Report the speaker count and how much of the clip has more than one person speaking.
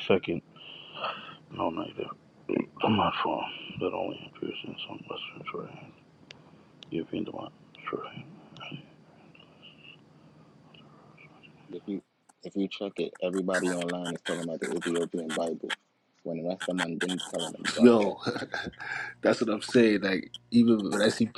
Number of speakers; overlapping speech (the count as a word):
three, about 2%